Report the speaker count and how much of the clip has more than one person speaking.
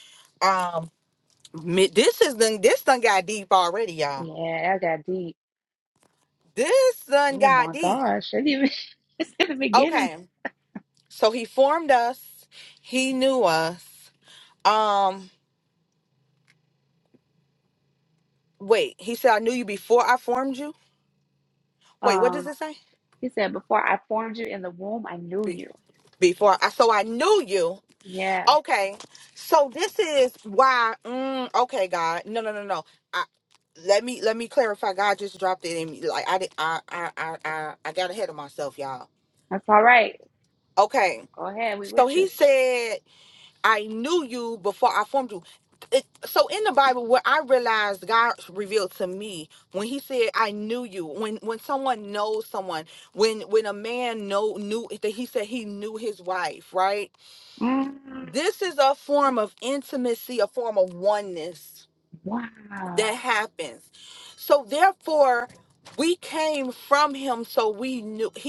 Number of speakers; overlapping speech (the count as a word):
two, about 3%